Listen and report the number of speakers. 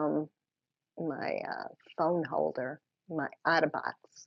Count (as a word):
one